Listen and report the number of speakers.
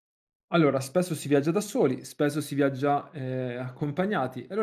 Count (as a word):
one